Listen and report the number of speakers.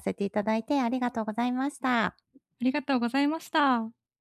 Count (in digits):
2